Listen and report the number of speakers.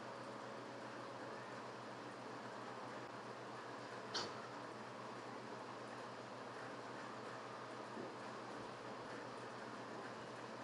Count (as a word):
zero